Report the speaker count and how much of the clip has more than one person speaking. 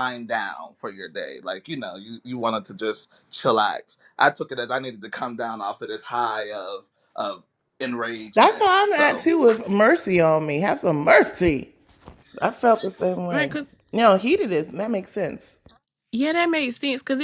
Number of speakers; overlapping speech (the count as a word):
three, about 4%